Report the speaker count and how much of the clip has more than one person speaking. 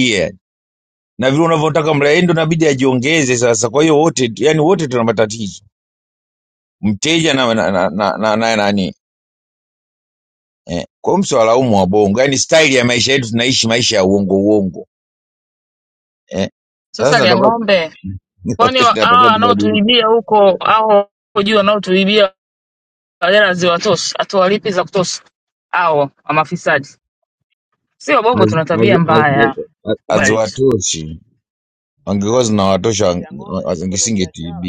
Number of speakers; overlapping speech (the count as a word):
three, about 13%